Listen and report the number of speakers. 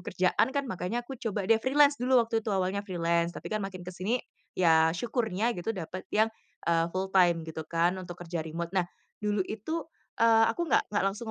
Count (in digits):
1